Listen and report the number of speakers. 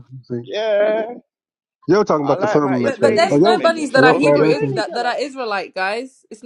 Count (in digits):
3